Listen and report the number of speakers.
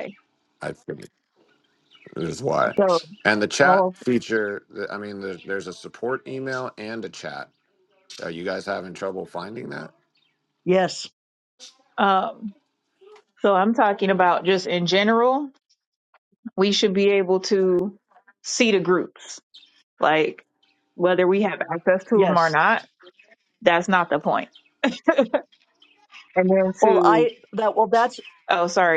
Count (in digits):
3